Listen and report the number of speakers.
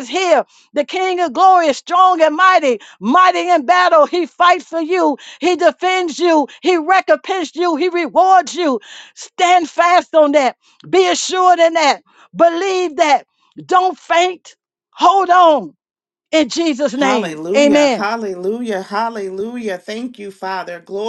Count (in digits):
2